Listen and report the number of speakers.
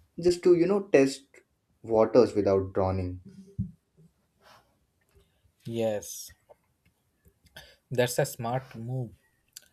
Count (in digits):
2